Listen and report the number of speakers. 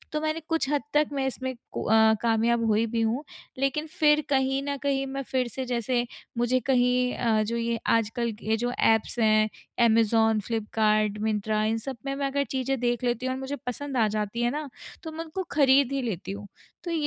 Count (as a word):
one